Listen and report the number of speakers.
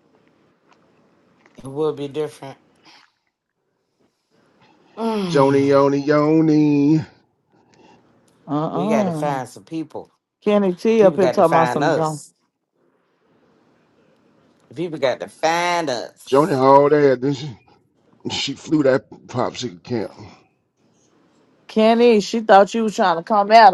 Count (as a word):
three